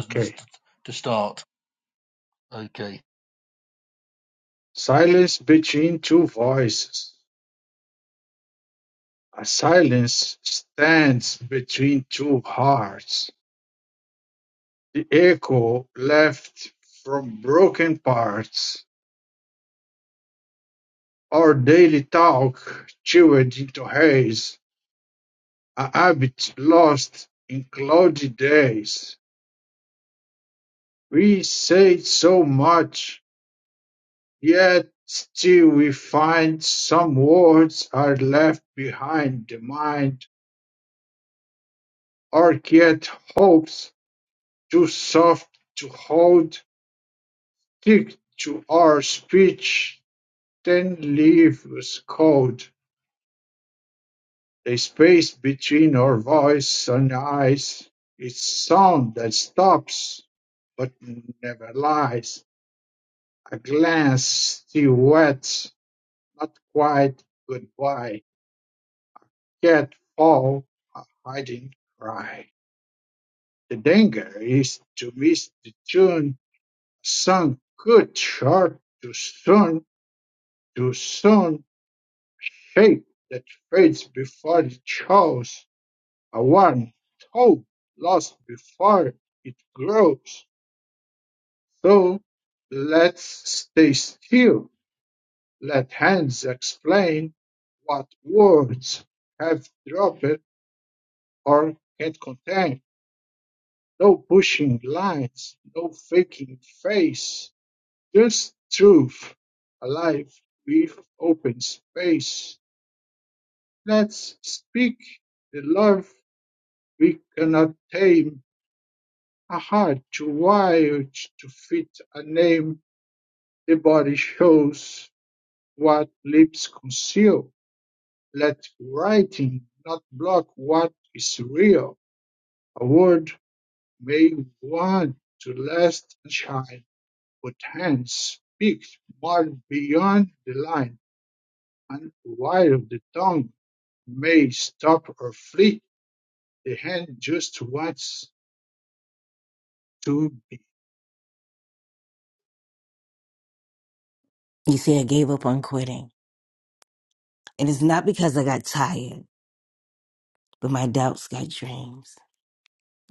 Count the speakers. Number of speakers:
3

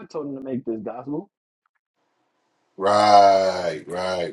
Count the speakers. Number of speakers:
2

